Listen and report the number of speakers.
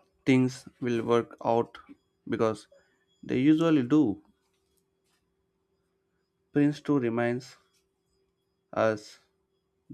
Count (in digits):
1